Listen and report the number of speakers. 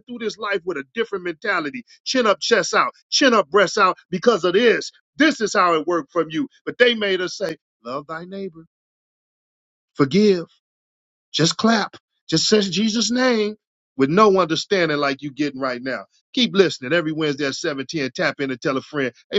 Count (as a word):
one